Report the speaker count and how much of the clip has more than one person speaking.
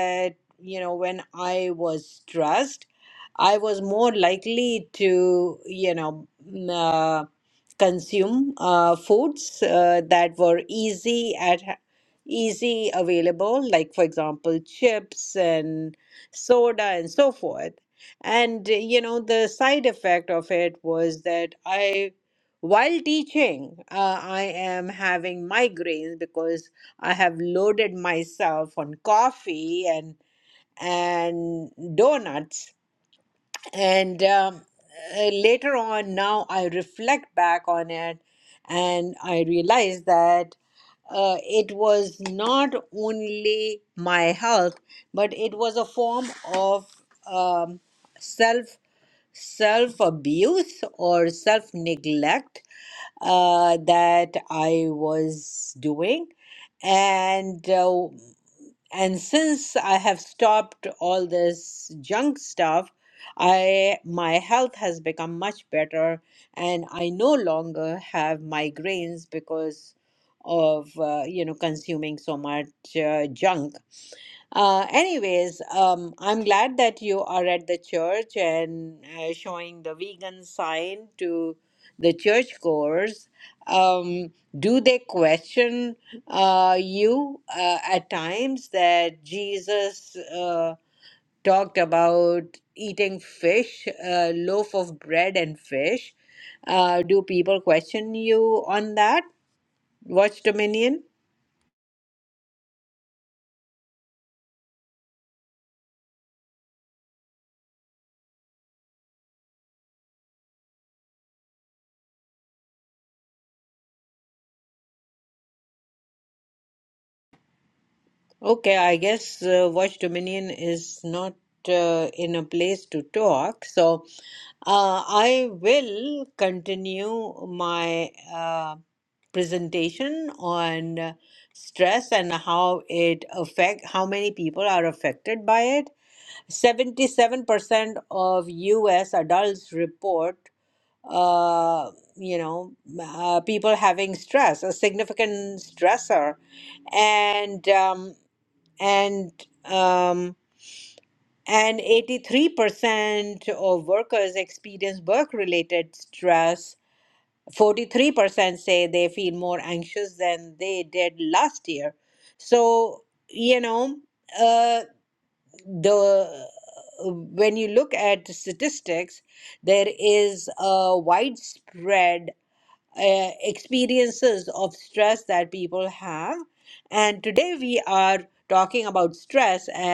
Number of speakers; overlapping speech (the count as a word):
one, no overlap